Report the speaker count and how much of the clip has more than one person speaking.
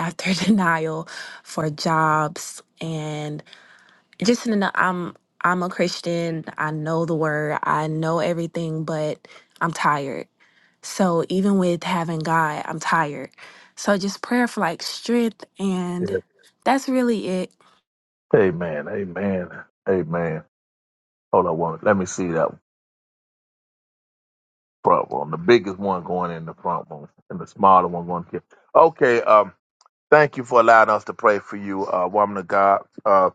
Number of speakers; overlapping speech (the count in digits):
2, under 1%